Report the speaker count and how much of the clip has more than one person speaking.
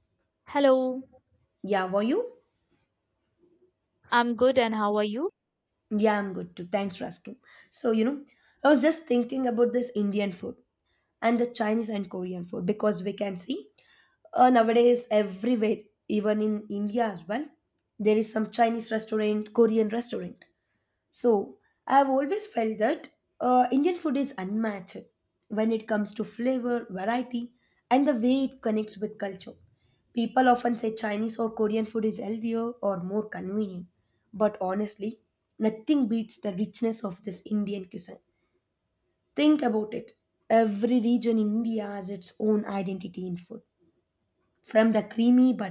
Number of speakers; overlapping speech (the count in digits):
2, no overlap